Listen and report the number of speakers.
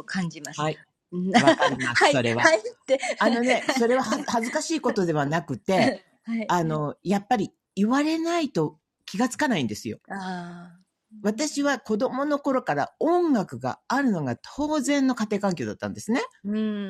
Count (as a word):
two